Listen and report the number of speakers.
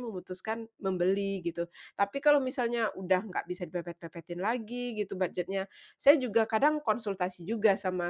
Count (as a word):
one